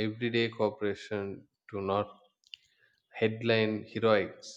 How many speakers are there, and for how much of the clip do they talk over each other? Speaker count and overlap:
one, no overlap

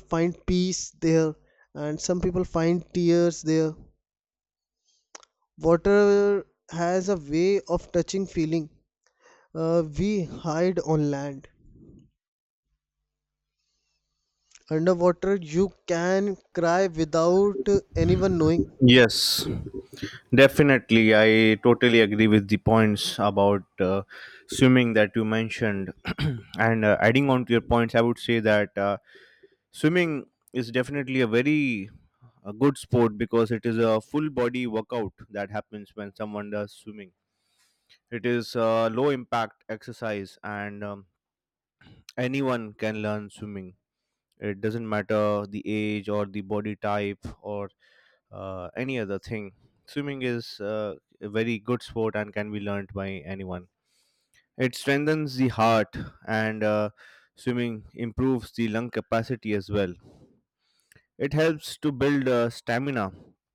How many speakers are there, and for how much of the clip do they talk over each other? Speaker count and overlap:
two, under 1%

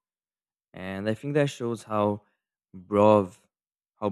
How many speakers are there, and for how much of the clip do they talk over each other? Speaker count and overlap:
one, no overlap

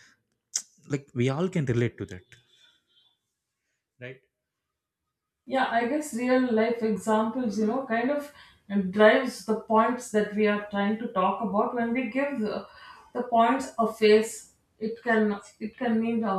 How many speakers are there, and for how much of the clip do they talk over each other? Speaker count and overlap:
two, no overlap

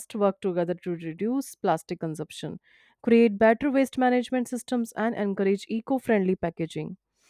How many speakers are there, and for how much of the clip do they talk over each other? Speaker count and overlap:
one, no overlap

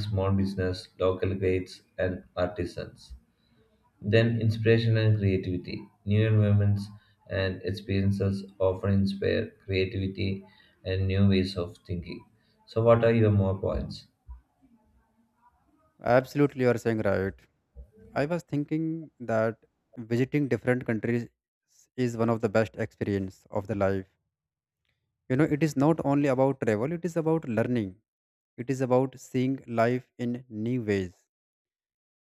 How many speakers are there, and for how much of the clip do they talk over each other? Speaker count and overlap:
two, no overlap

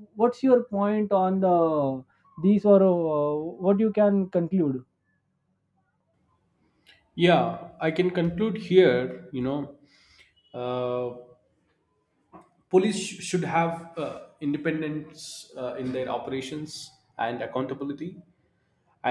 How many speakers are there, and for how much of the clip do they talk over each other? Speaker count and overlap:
two, no overlap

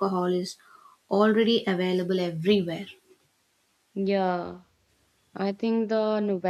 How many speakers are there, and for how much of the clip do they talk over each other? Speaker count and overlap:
two, no overlap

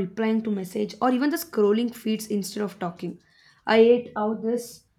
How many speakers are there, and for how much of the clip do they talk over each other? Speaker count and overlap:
one, no overlap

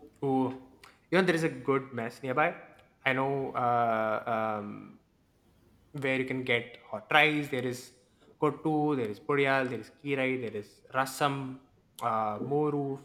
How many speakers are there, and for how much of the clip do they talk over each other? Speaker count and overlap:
one, no overlap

